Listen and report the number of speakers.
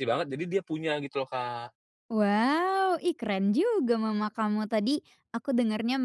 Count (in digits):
2